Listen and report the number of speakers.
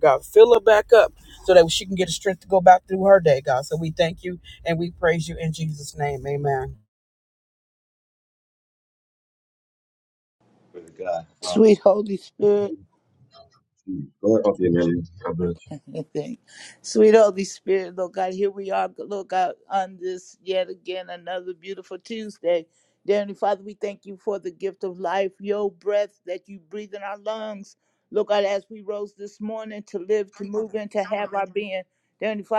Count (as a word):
three